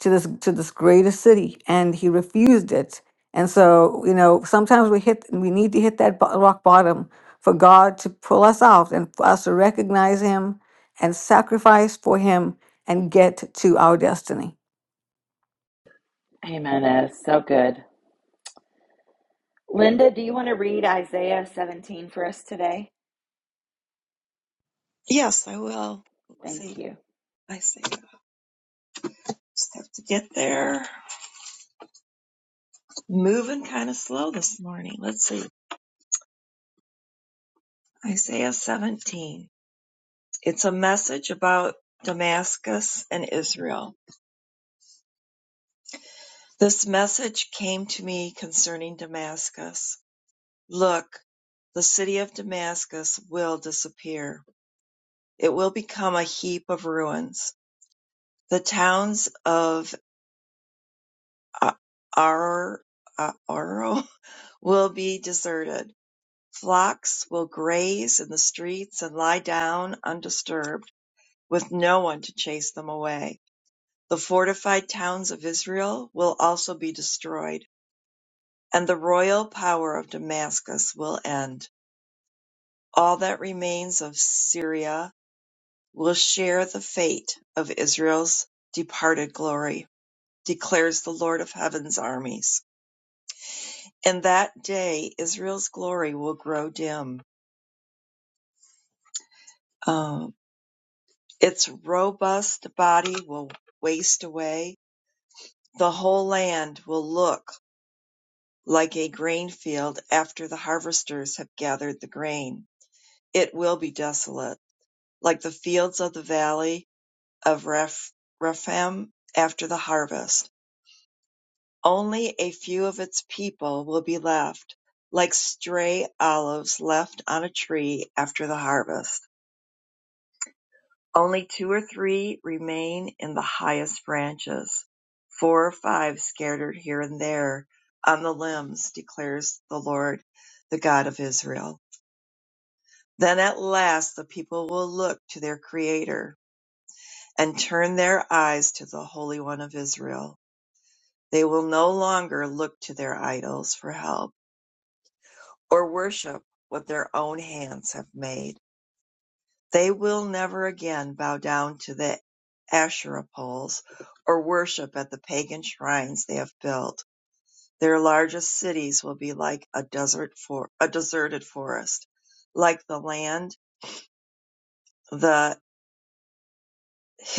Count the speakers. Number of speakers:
three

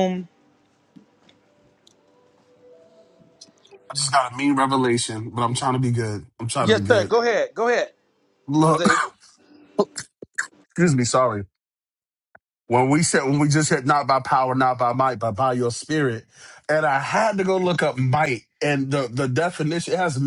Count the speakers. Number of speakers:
two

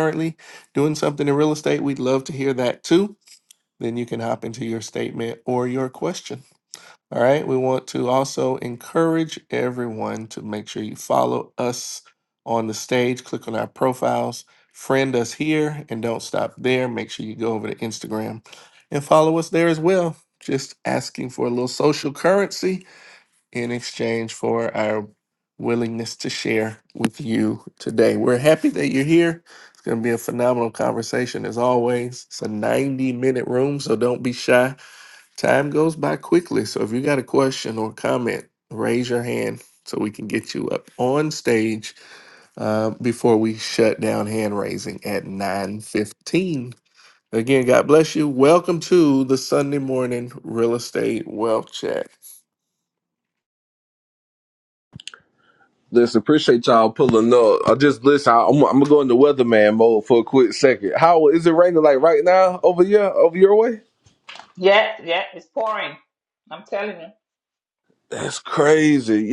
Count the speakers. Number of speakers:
three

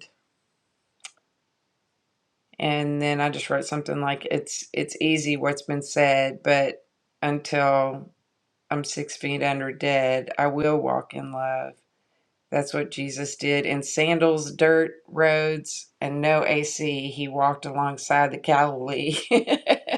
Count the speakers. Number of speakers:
one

